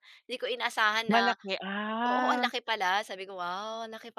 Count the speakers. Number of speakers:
two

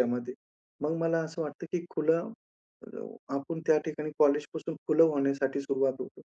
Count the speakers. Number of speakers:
one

